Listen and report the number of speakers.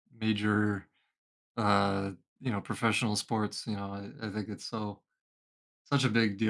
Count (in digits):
1